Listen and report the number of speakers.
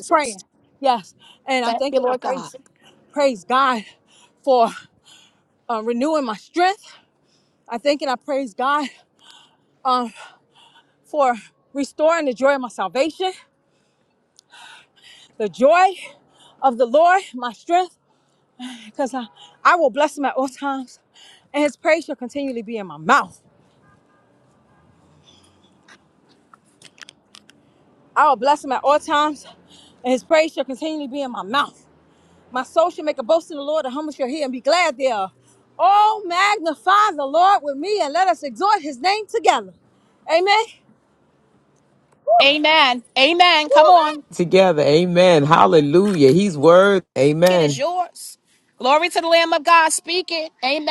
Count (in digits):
3